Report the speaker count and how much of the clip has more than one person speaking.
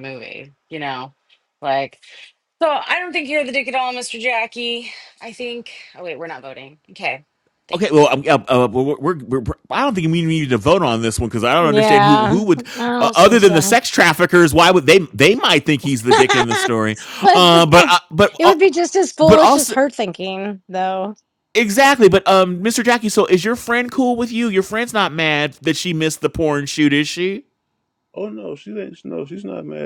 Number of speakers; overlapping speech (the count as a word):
four, about 10%